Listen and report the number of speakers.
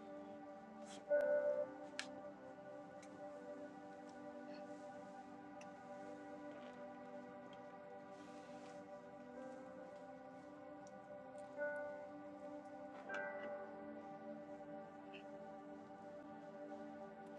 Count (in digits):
0